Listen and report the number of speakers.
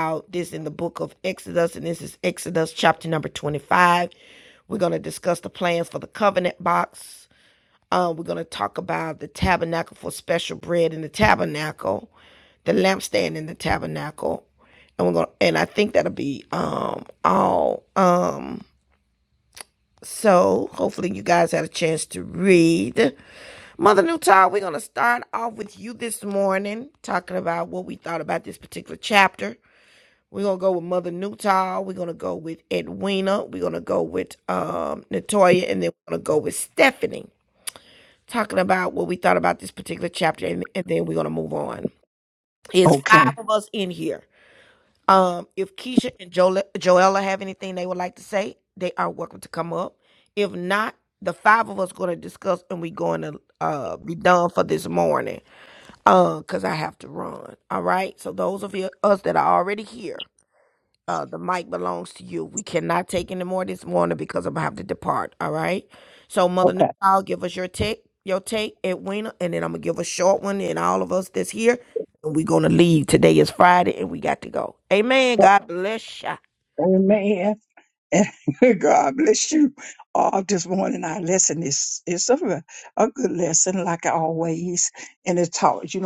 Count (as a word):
two